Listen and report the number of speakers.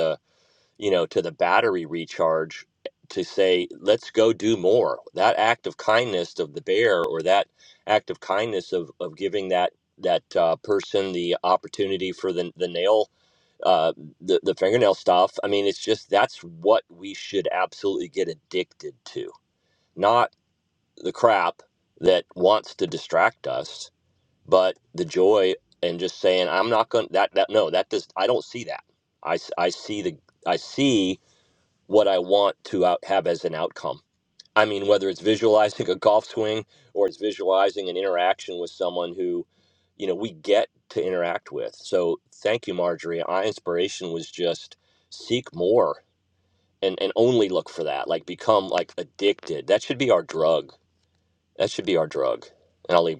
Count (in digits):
1